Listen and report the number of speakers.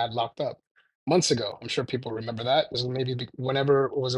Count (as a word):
one